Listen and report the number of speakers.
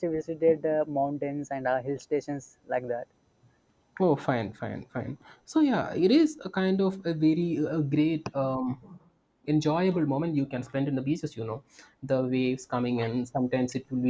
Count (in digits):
2